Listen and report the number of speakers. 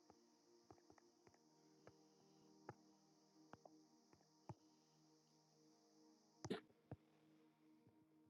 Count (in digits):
0